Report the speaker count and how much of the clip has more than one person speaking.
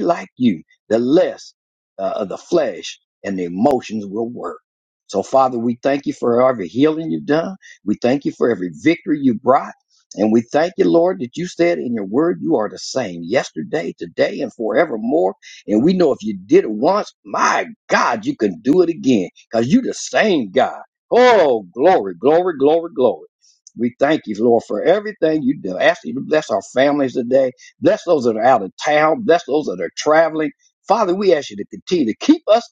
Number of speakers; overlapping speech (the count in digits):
1, no overlap